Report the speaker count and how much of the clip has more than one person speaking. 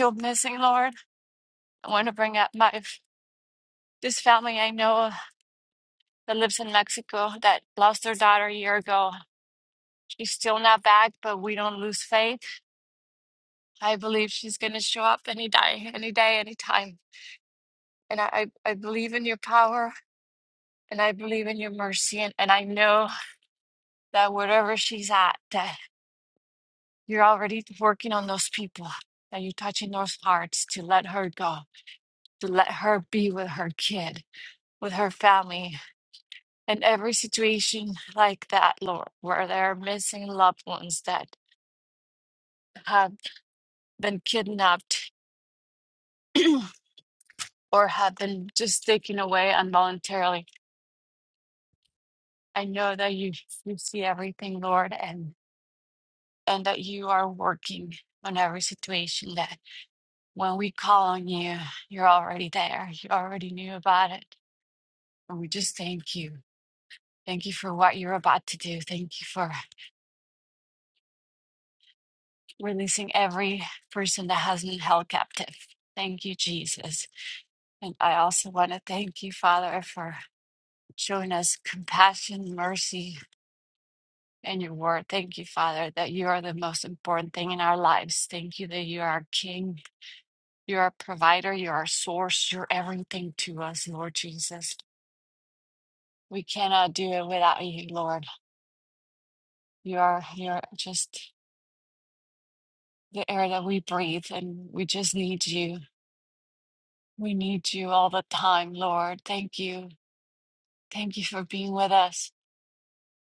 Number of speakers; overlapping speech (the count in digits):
1, no overlap